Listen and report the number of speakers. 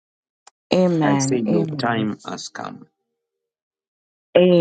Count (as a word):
two